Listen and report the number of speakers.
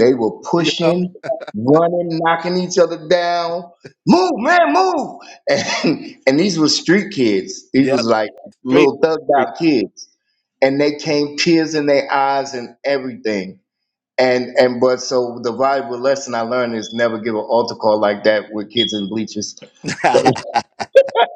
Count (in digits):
2